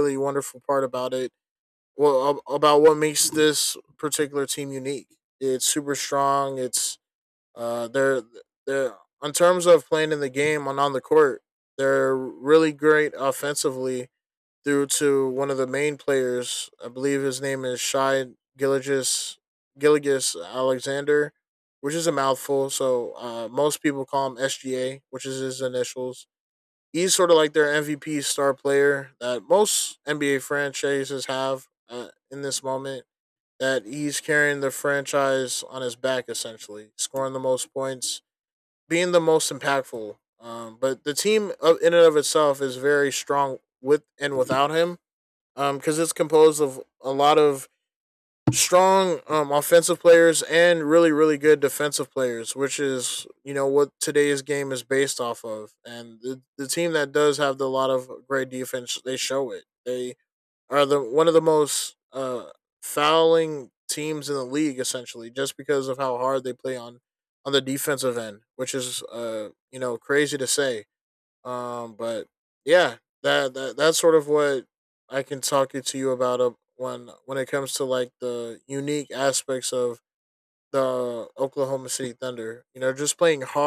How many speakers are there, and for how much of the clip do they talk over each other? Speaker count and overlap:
1, no overlap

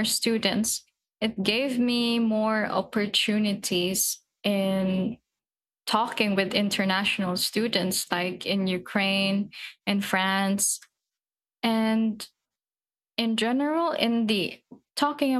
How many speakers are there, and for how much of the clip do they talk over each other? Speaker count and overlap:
1, no overlap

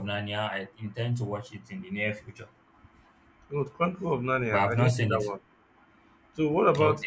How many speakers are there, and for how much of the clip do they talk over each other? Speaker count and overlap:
2, about 15%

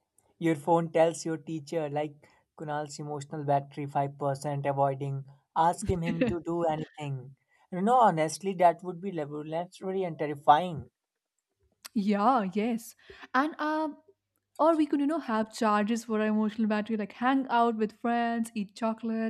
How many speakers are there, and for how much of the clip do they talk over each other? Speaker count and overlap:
2, no overlap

